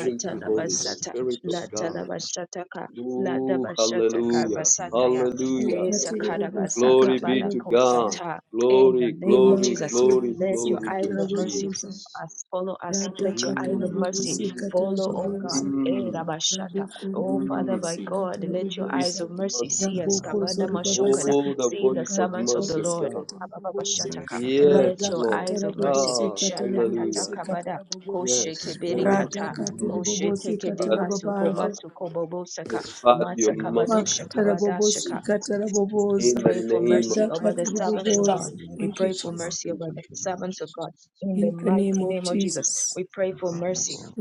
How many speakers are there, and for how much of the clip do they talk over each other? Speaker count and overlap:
three, about 77%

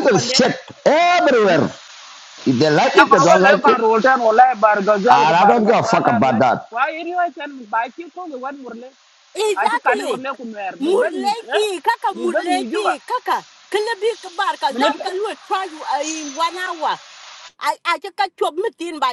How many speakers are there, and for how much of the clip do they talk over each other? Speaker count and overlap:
three, about 29%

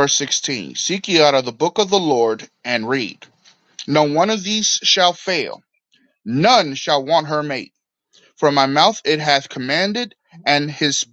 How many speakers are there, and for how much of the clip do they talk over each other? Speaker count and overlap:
one, no overlap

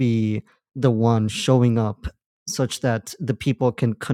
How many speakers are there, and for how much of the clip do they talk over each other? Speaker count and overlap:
one, no overlap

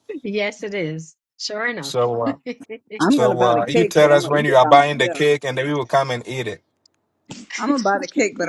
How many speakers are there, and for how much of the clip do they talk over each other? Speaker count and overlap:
three, about 28%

